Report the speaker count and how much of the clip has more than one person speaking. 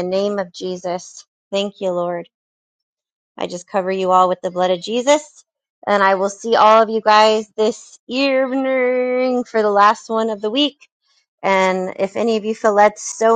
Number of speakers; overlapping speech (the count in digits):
1, no overlap